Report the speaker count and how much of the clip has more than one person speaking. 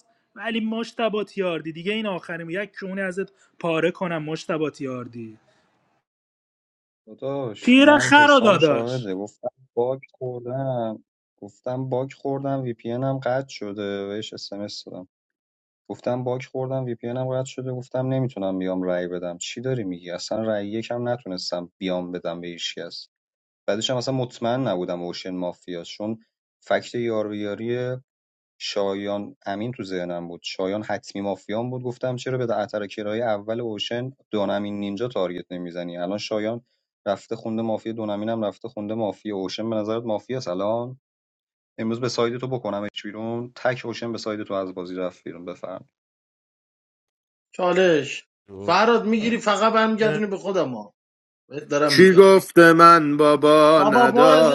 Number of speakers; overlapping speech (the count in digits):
4, about 5%